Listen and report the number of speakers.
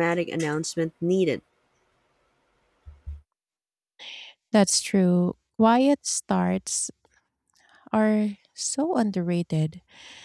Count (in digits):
2